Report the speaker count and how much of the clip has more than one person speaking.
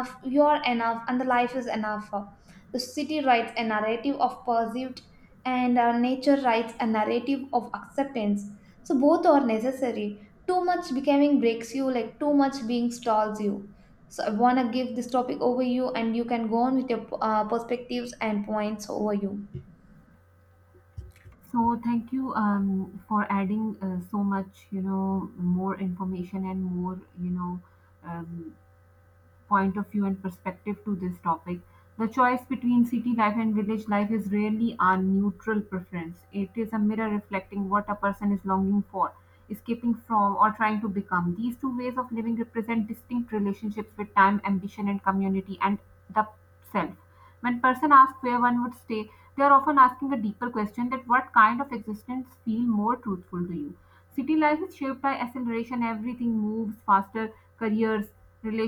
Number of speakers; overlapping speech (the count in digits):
2, no overlap